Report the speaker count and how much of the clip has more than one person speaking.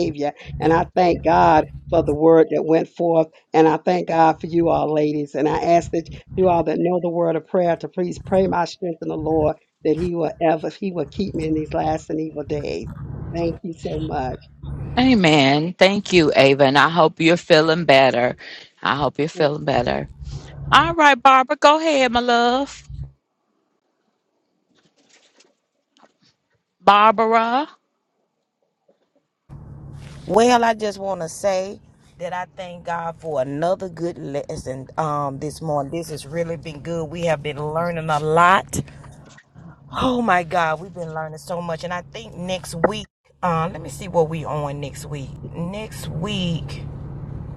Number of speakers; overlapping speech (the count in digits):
3, no overlap